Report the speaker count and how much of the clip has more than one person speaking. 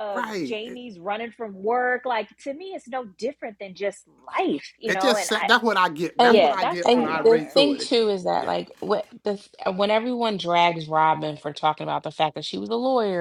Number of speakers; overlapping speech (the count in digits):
3, about 24%